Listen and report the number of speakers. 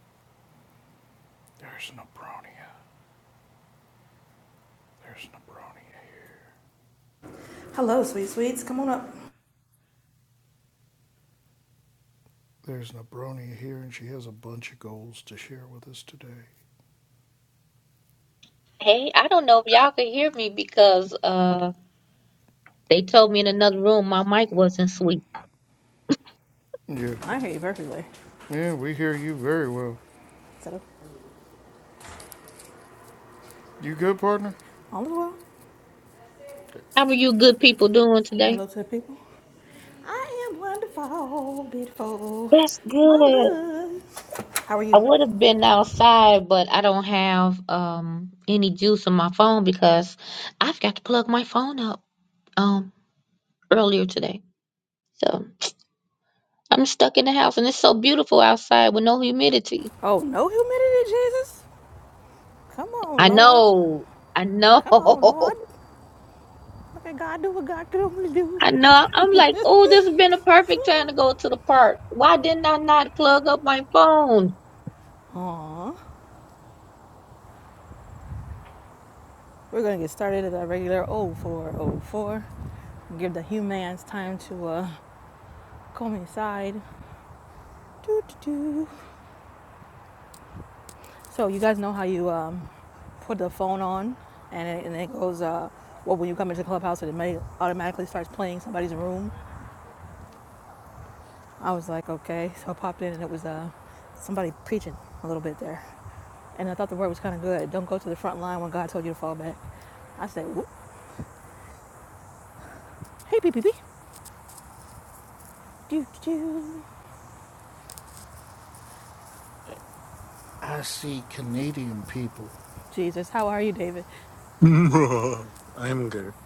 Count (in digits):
4